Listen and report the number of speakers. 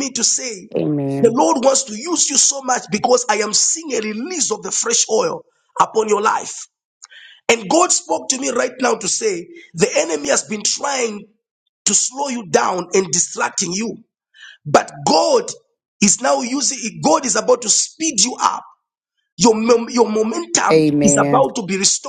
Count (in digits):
2